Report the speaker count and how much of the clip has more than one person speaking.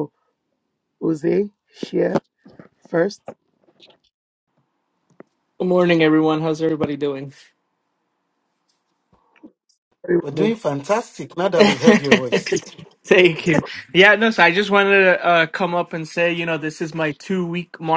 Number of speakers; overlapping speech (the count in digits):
3, about 6%